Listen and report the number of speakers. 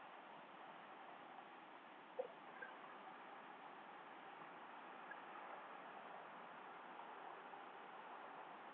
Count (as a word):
zero